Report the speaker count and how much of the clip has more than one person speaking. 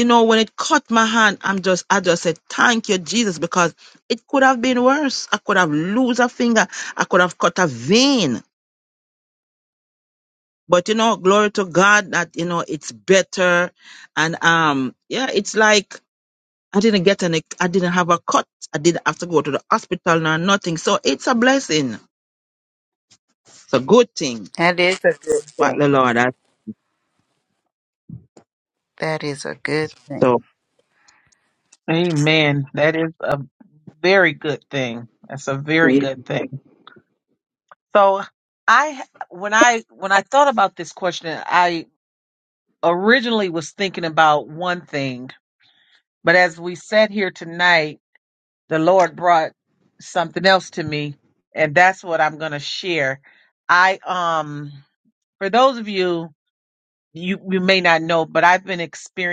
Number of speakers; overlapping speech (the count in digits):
3, about 1%